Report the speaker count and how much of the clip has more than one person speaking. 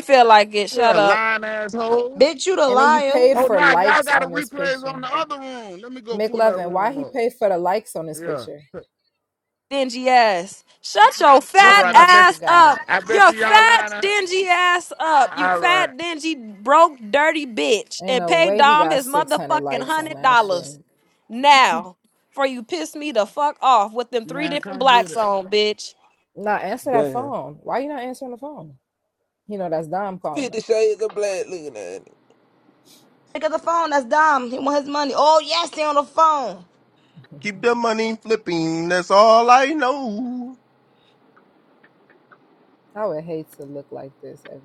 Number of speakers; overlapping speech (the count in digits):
6, about 25%